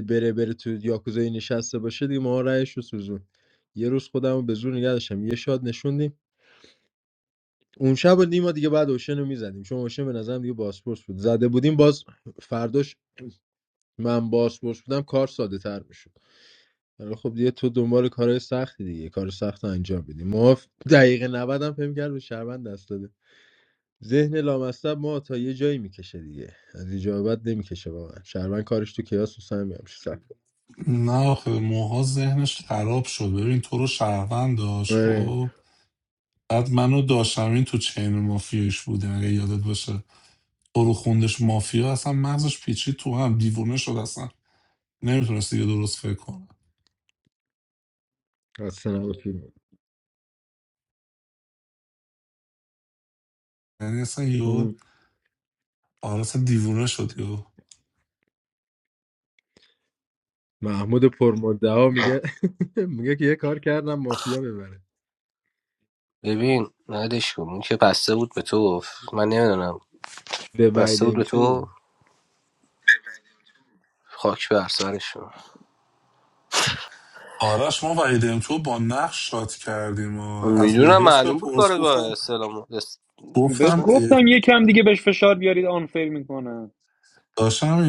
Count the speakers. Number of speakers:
4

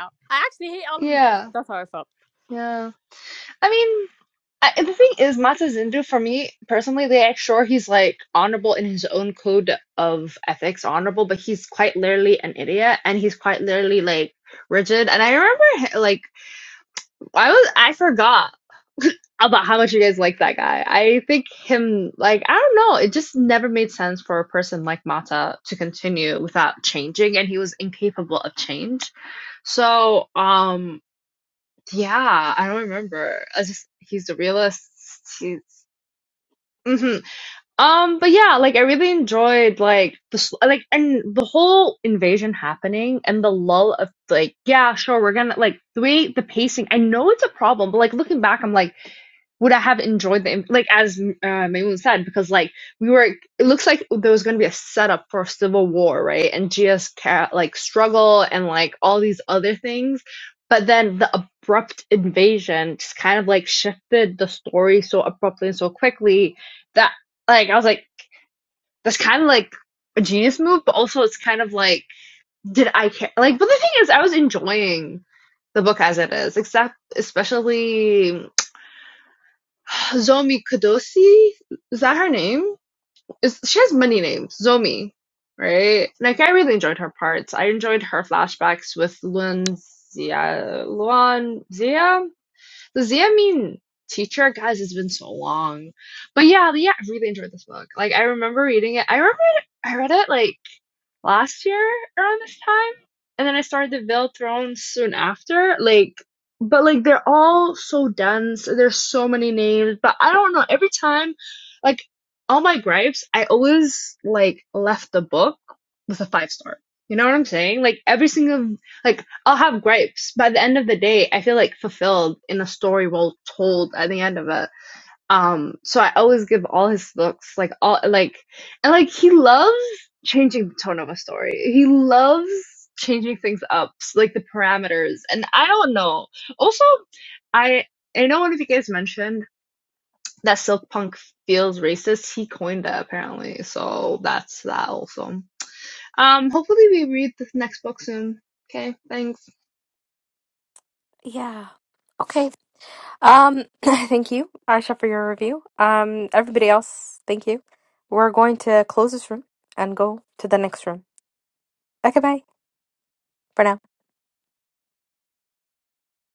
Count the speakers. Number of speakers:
3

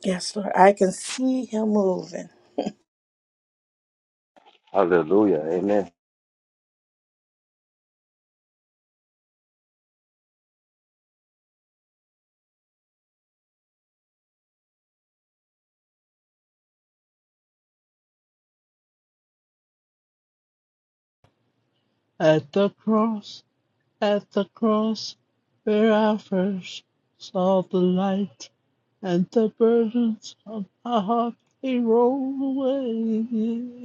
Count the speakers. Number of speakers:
3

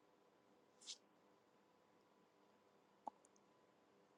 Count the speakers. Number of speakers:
0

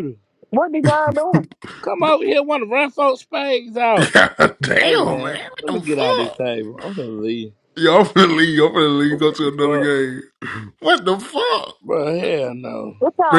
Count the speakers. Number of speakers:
3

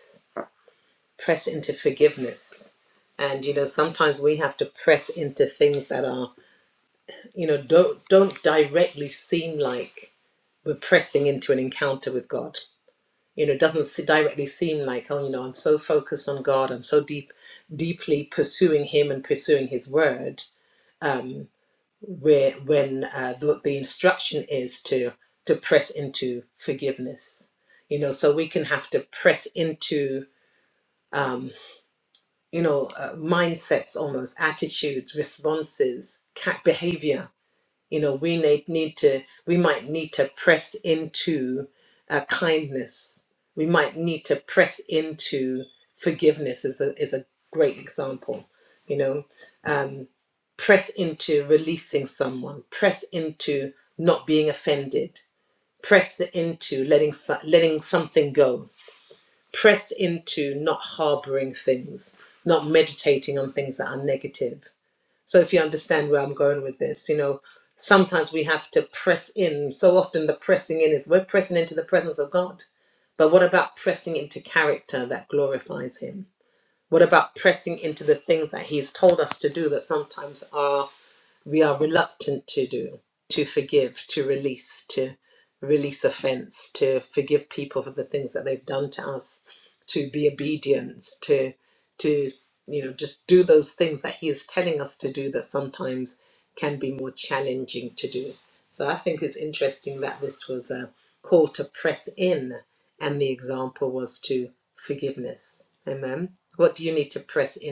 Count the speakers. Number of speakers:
1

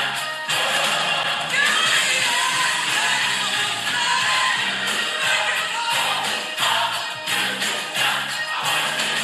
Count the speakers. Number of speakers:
0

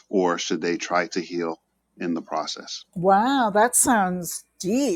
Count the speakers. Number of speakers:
2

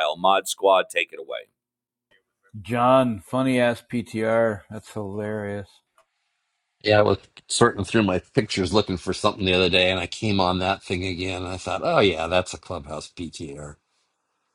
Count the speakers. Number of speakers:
3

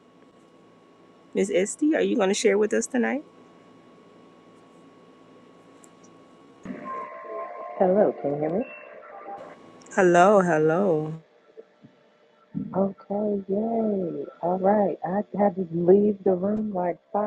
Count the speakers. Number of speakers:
2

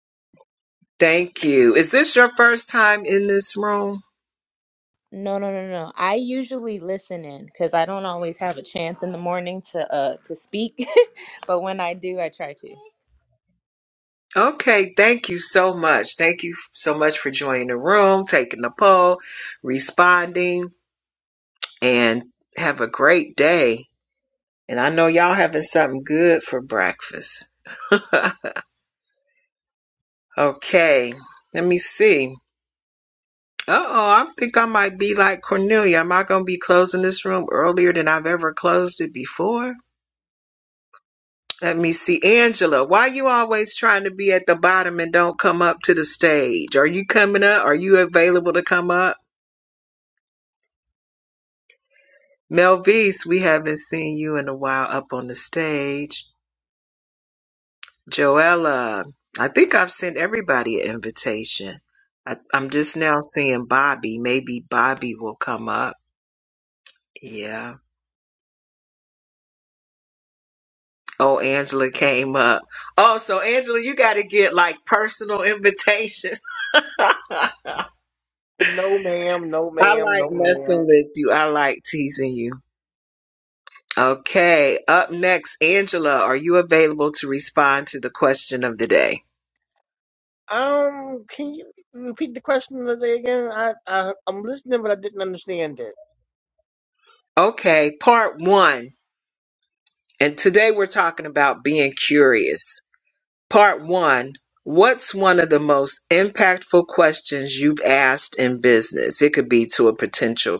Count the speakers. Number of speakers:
3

